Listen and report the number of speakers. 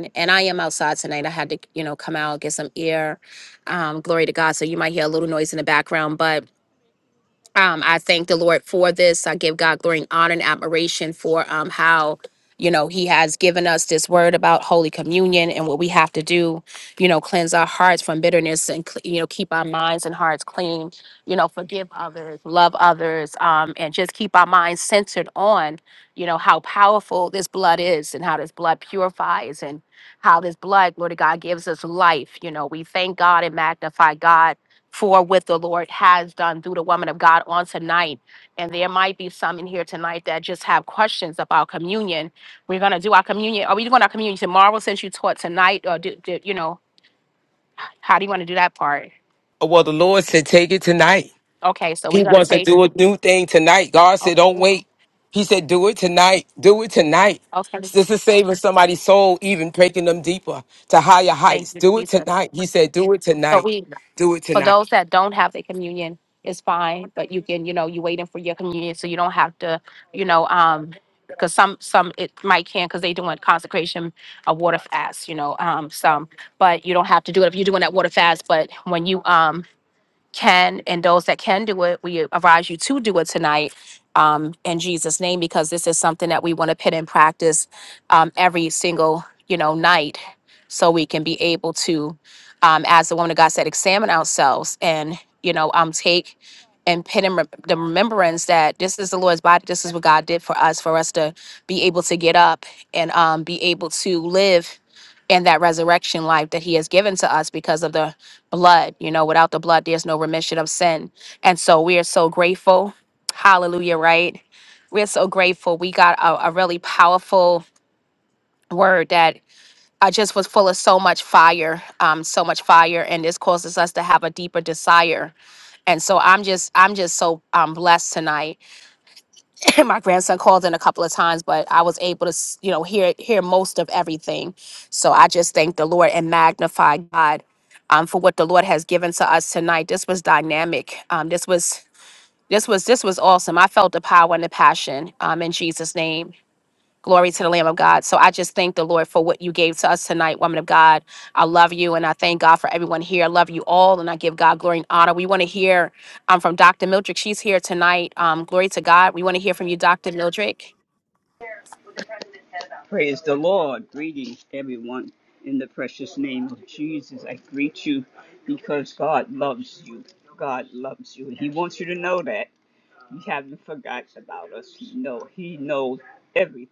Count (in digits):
3